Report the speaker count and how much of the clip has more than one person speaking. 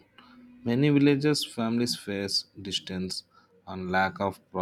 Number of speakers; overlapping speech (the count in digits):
1, no overlap